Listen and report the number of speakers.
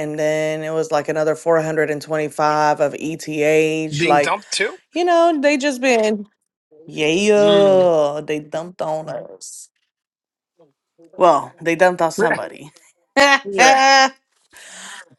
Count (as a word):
two